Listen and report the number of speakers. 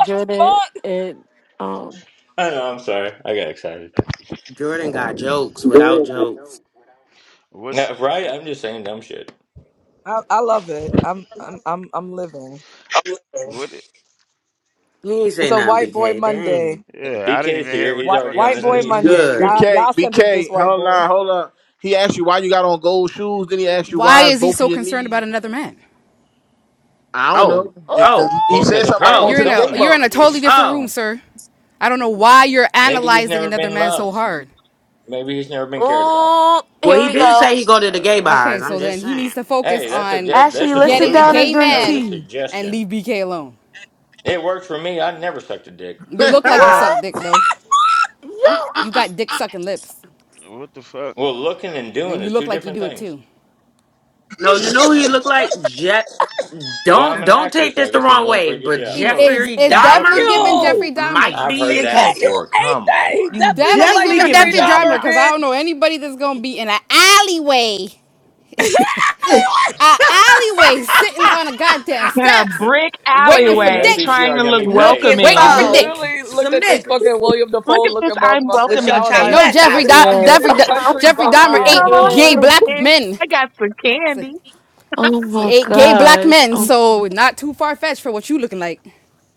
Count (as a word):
eight